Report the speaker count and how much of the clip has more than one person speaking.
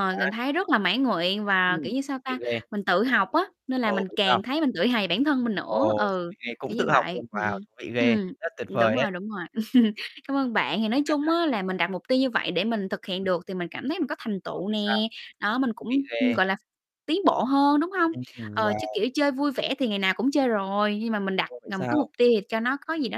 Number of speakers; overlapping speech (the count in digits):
2, about 26%